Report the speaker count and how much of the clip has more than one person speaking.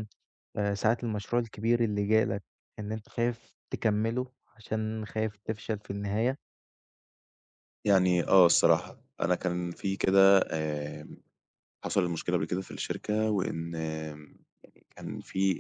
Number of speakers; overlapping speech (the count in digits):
2, no overlap